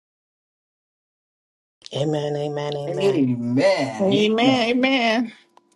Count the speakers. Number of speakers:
3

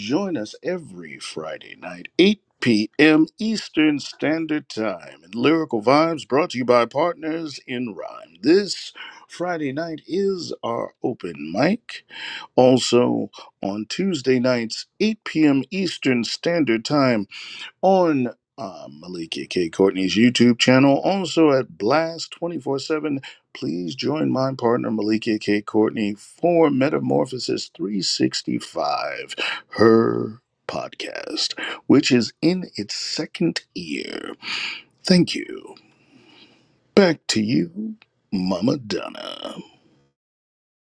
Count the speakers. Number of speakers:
1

